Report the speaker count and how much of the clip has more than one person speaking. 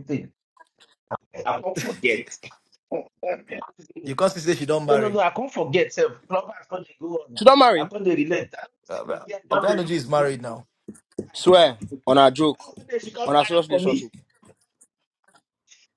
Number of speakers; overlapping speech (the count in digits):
3, about 17%